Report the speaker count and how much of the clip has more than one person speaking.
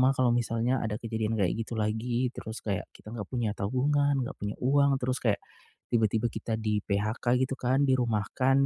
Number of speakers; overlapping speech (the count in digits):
1, no overlap